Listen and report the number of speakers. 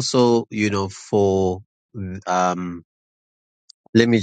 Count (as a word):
one